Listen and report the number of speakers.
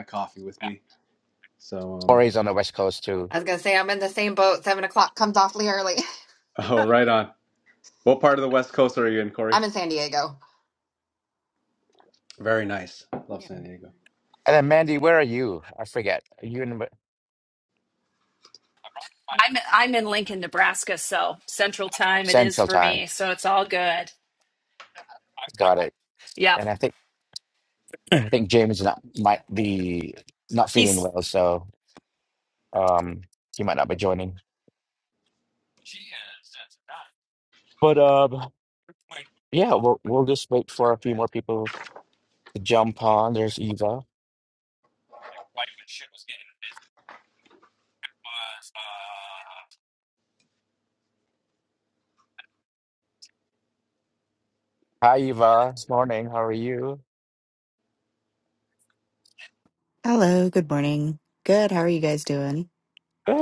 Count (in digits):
5